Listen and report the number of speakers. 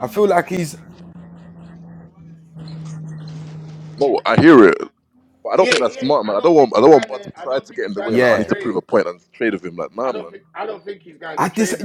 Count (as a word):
three